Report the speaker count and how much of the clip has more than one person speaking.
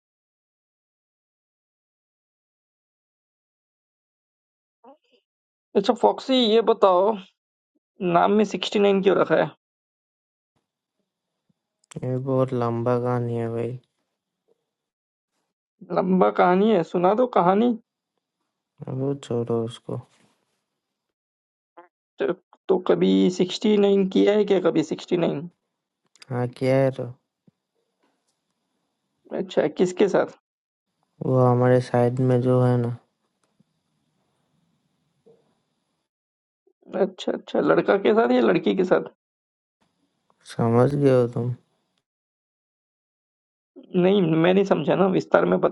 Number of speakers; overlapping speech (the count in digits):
2, no overlap